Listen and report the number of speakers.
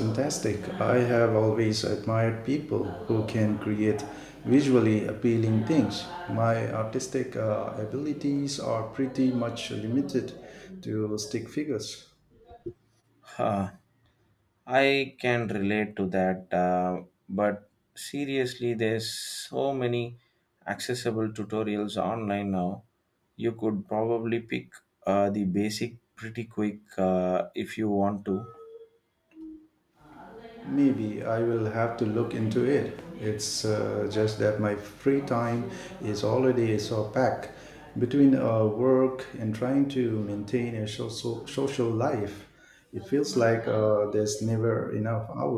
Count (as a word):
two